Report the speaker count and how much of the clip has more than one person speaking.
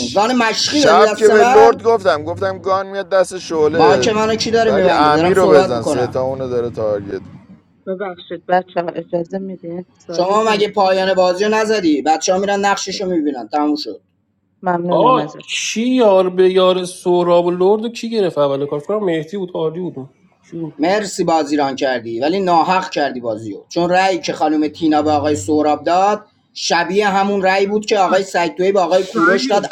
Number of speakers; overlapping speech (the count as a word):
four, about 15%